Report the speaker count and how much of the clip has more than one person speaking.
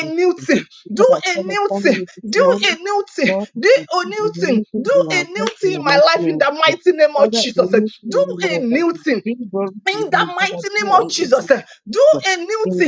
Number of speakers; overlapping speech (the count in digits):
2, about 70%